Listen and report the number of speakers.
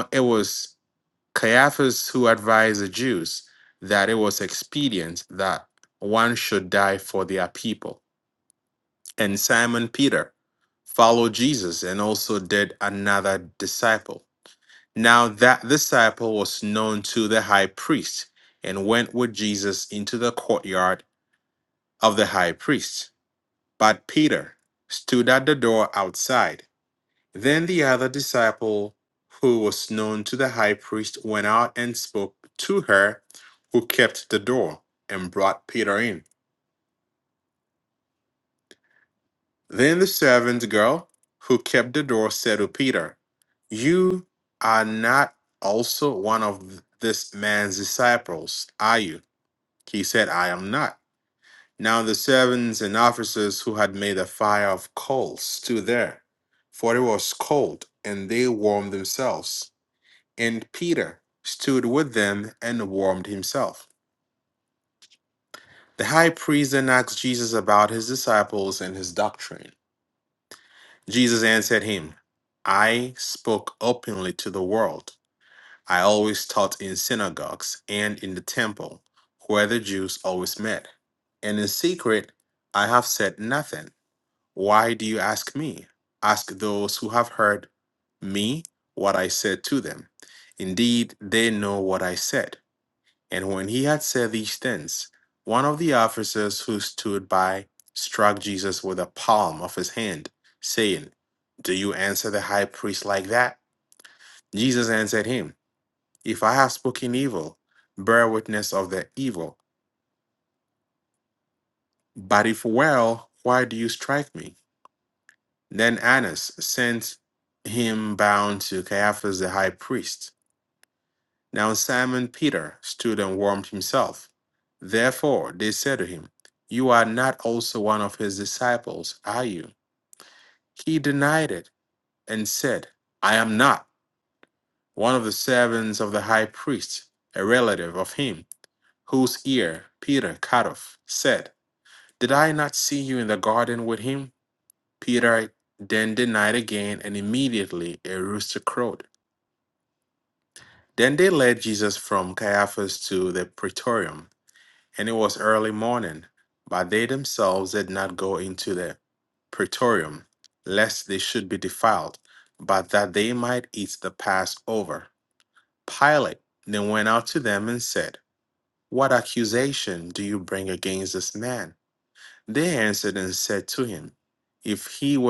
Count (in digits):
1